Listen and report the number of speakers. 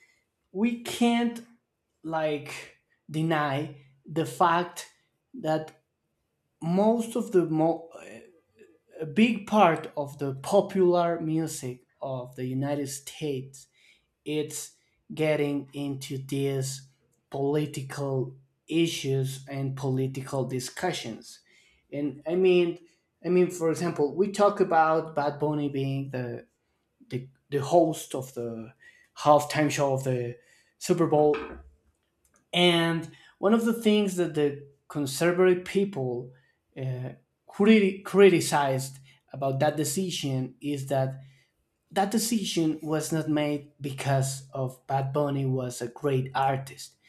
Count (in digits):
1